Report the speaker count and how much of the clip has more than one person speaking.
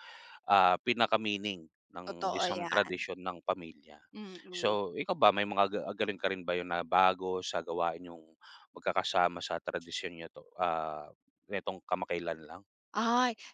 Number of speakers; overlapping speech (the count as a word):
two, about 8%